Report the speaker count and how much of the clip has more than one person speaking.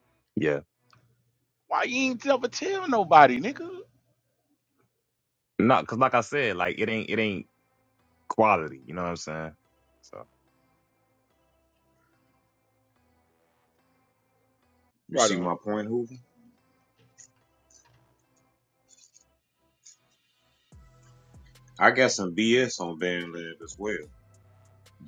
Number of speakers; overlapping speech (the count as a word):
three, about 1%